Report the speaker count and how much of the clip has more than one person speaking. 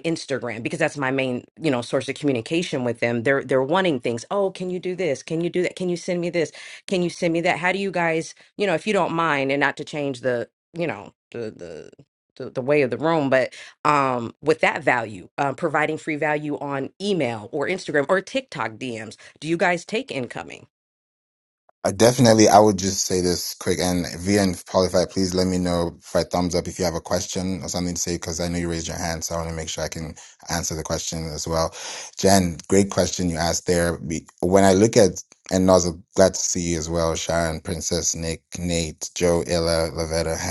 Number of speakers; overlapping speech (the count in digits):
2, no overlap